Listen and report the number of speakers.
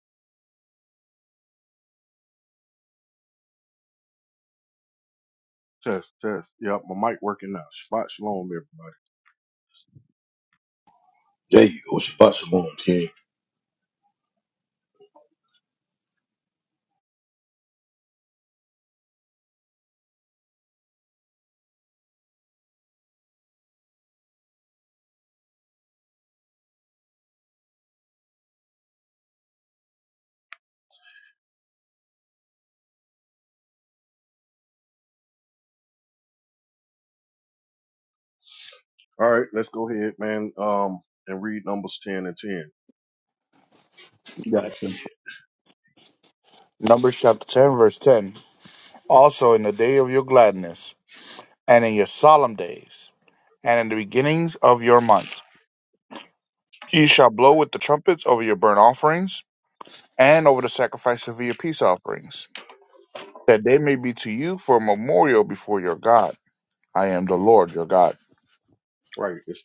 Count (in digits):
3